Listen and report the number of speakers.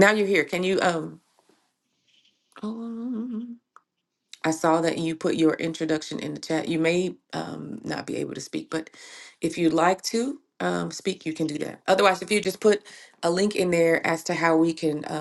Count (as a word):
one